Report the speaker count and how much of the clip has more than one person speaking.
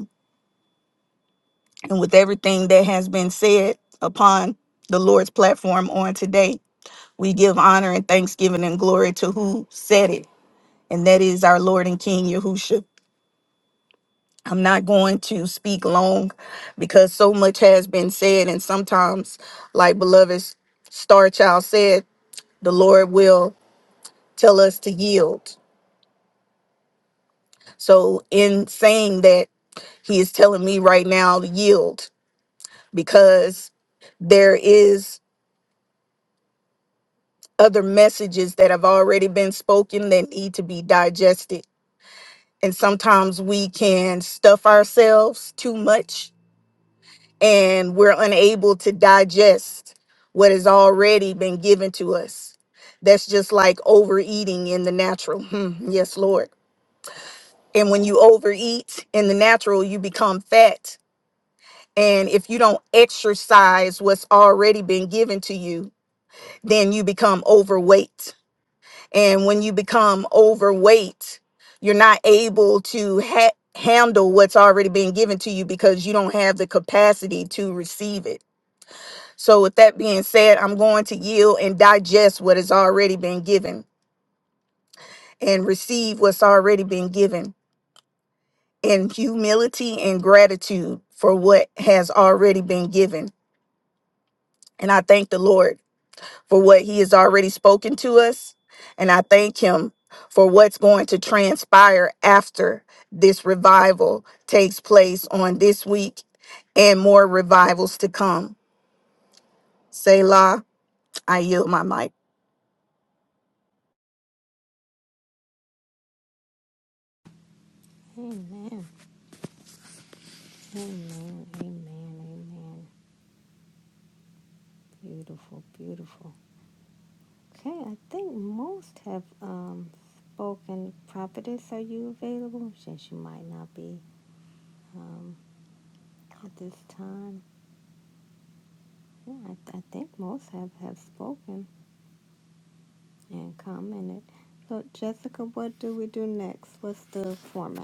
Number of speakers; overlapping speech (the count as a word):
two, no overlap